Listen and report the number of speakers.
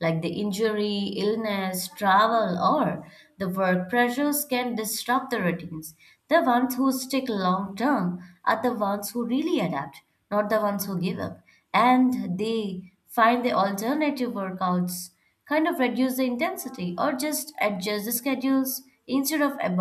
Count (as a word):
one